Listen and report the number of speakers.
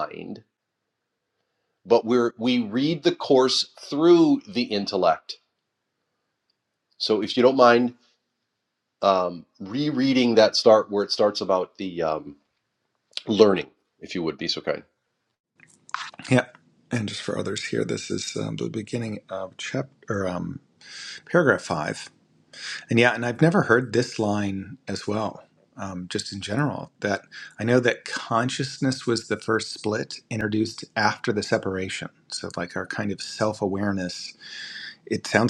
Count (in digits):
2